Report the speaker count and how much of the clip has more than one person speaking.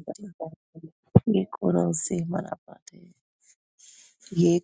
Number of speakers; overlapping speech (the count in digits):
1, no overlap